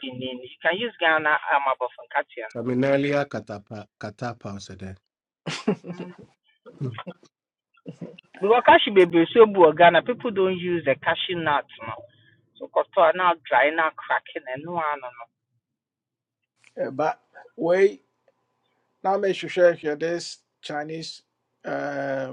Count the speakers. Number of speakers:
3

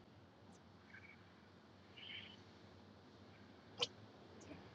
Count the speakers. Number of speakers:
0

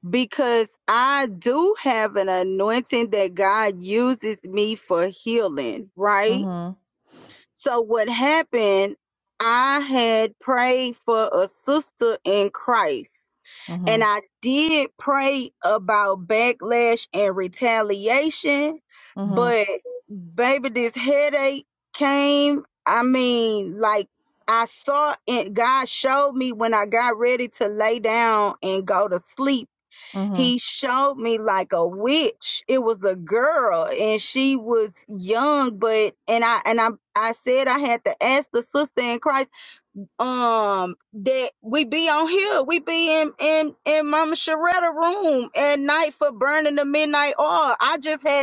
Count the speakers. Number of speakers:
2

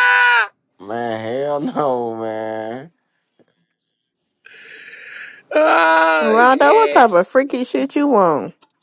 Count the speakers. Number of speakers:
3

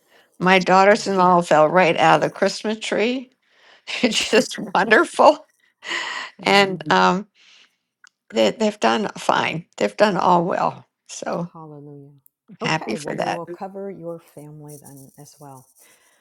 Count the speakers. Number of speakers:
2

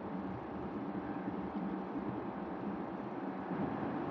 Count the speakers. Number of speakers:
0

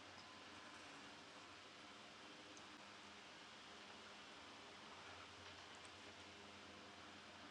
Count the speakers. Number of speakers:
0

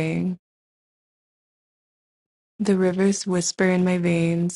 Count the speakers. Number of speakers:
1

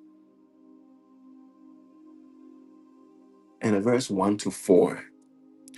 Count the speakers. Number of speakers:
1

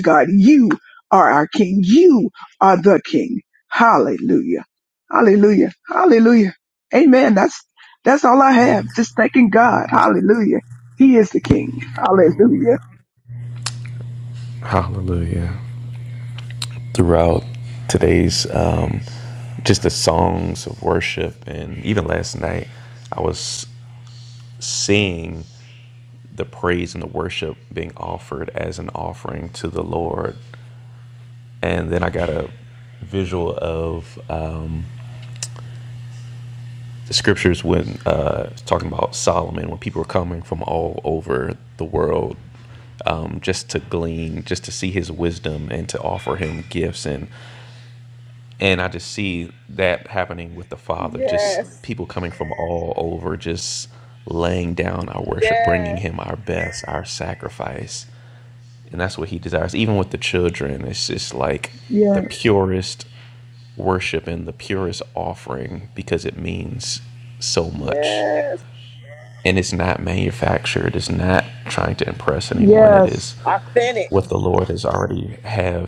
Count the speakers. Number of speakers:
3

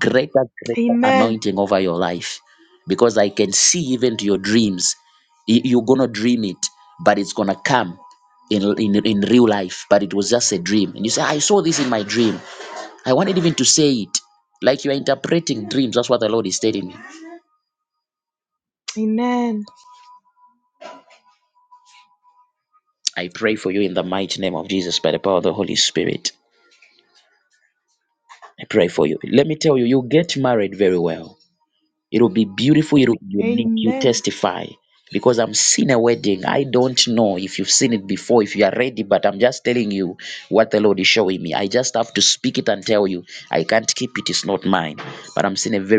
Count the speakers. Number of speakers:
2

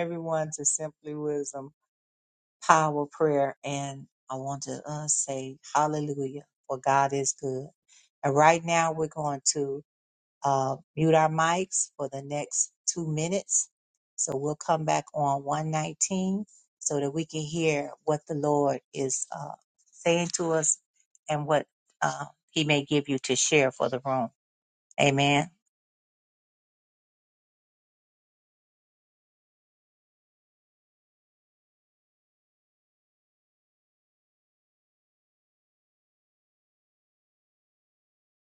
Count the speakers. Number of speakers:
1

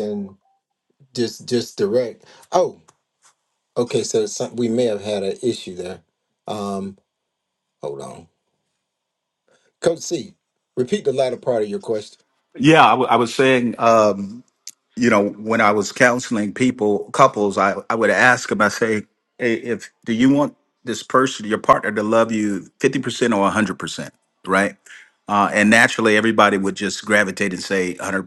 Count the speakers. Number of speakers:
2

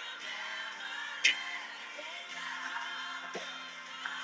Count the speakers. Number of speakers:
0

